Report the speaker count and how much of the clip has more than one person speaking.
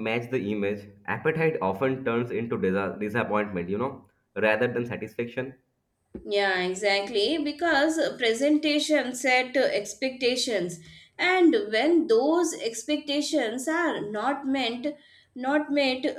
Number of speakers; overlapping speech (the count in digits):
2, no overlap